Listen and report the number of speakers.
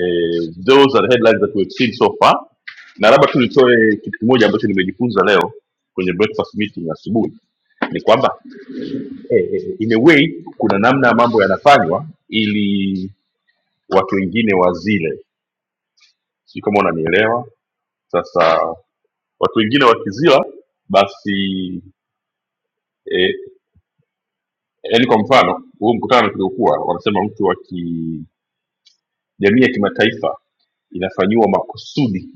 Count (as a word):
one